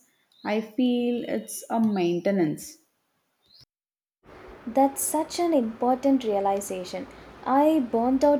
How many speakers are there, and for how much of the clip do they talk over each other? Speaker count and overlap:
two, no overlap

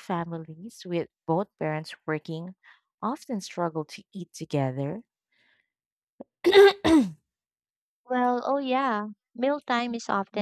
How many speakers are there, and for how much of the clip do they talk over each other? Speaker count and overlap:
two, no overlap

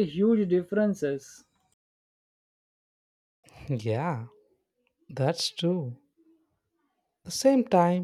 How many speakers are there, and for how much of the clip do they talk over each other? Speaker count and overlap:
two, no overlap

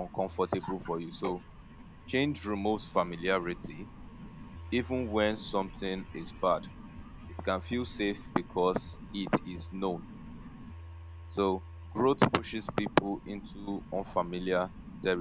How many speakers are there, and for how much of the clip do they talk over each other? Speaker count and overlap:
one, no overlap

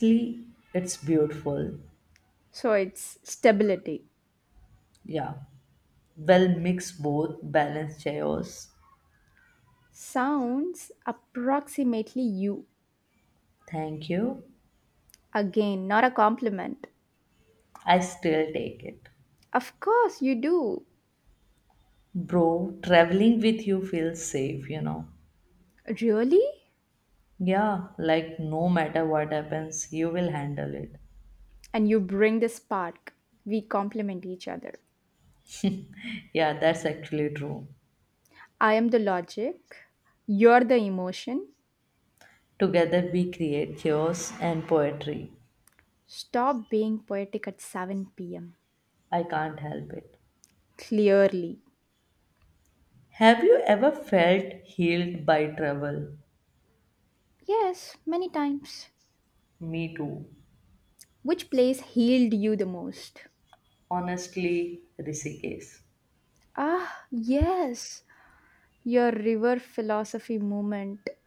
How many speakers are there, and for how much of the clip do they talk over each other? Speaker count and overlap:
two, no overlap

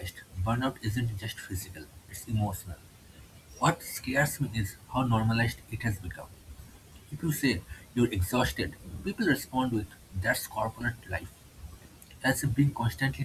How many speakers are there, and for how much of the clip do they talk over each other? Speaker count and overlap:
one, no overlap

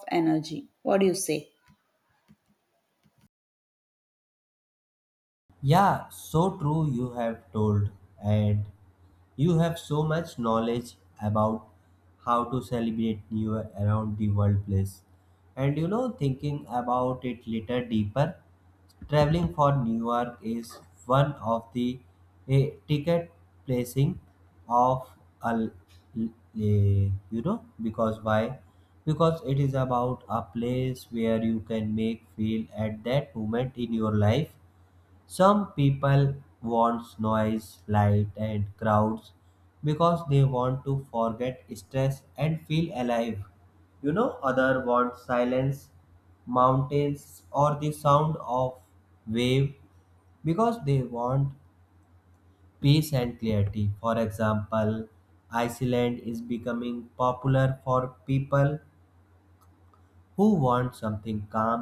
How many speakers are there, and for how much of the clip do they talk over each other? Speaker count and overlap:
two, no overlap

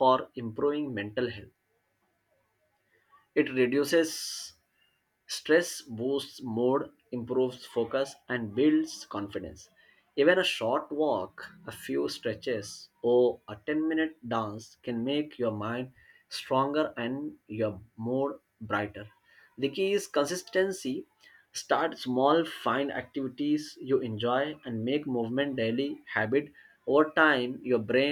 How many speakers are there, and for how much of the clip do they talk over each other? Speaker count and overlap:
one, no overlap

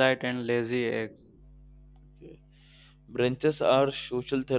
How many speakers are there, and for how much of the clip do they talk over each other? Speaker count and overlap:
two, no overlap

